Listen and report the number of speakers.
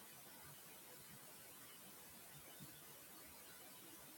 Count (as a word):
zero